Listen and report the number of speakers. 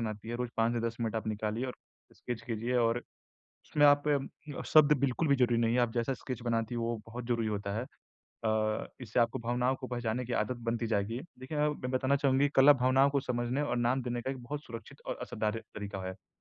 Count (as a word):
one